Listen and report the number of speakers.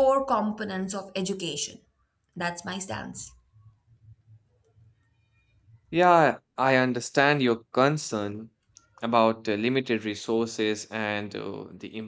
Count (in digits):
2